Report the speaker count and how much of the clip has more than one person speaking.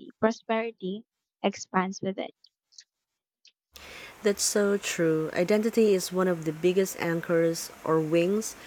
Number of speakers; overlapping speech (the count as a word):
two, no overlap